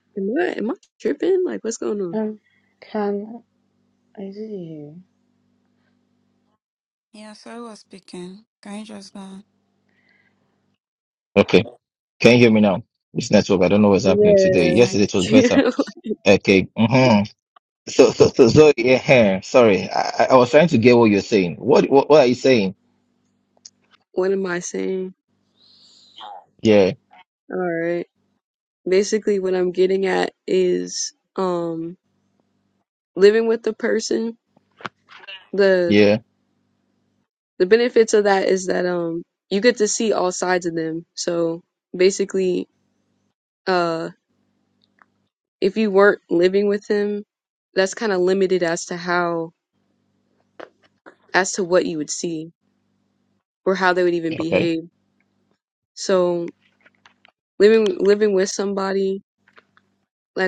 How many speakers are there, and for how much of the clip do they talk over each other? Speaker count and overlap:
4, about 2%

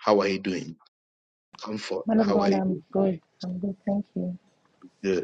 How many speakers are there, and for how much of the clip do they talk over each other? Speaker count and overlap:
2, about 15%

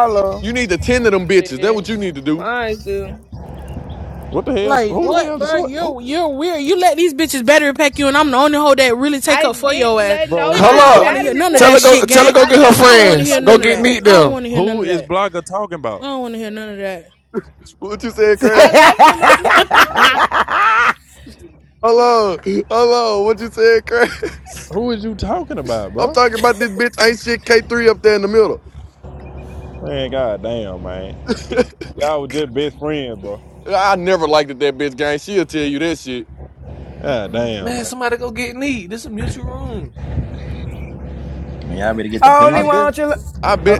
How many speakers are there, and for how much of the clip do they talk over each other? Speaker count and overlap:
7, about 22%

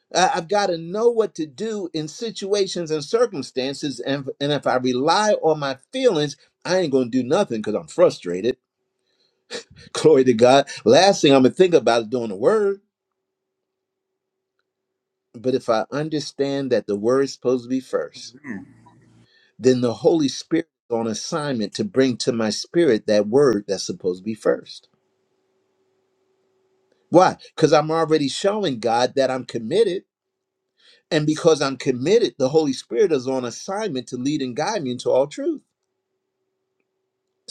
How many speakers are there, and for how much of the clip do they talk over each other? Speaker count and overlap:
1, no overlap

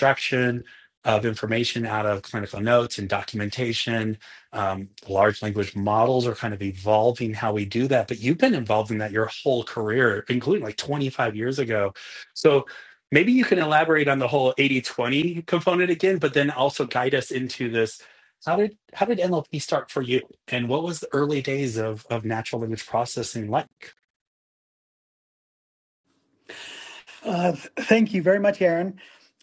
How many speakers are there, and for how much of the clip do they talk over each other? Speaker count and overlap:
2, no overlap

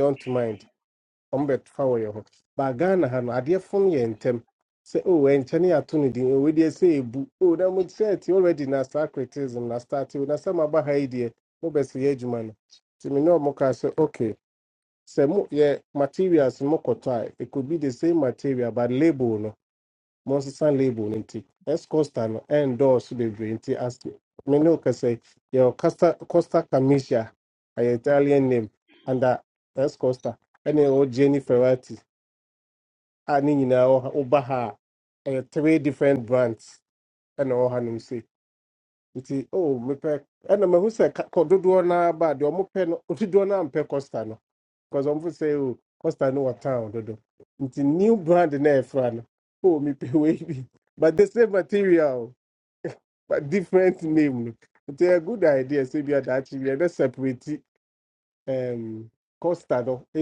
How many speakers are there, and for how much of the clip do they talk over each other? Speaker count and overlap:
1, no overlap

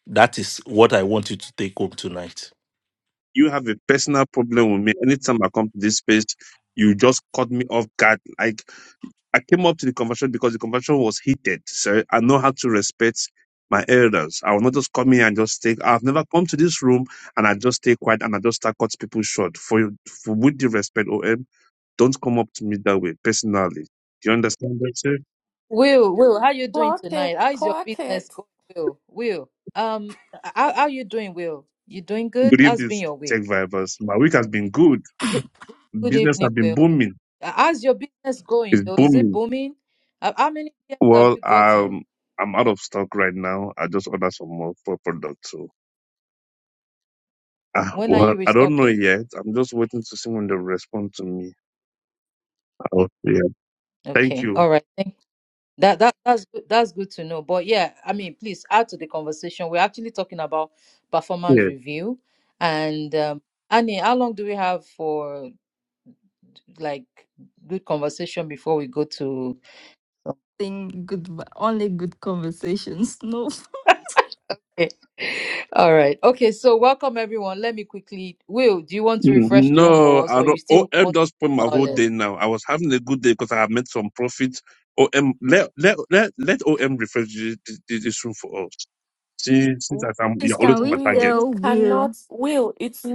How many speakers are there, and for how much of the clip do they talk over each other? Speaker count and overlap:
5, about 11%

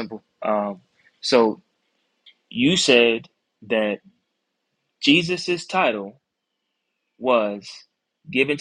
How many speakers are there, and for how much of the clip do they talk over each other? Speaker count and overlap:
1, no overlap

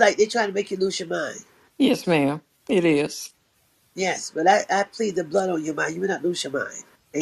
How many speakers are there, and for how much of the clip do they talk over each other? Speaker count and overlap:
2, about 1%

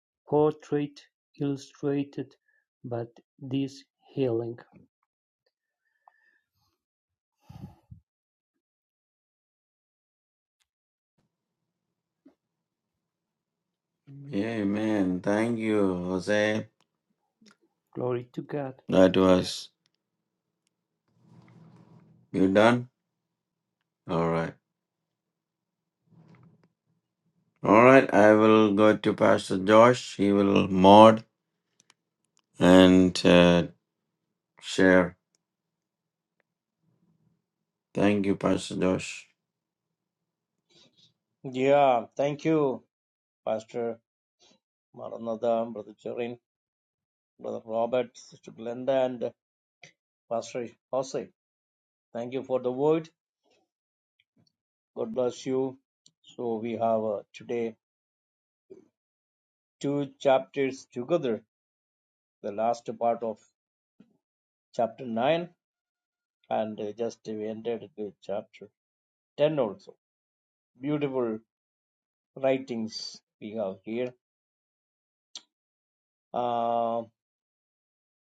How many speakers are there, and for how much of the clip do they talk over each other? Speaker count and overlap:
3, no overlap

